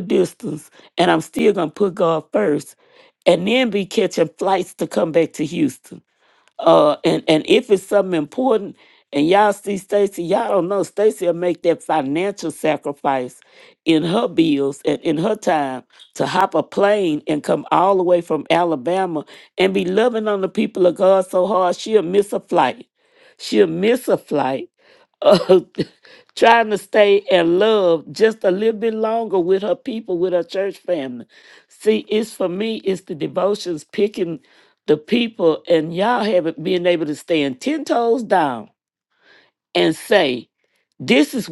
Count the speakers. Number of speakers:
1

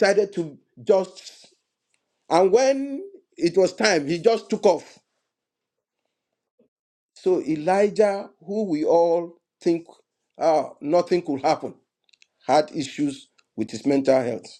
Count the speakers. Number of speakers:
1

